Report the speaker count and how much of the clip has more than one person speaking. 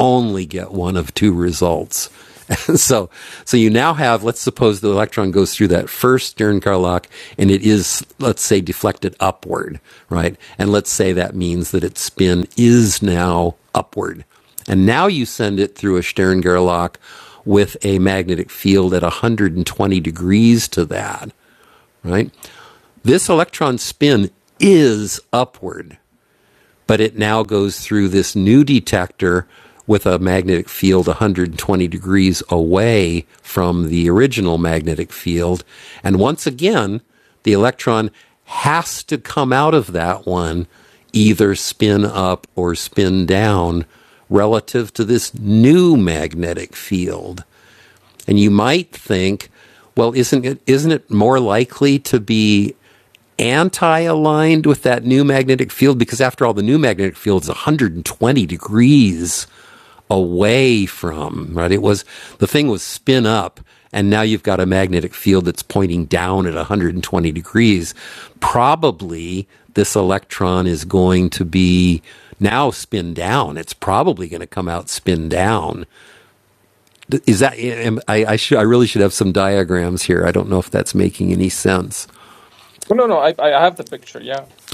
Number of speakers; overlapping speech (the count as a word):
two, no overlap